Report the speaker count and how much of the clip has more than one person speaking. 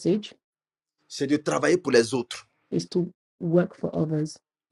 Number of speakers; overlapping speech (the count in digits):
2, no overlap